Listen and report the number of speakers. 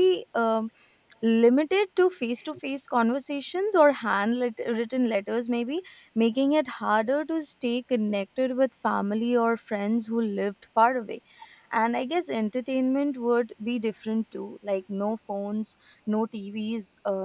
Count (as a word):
one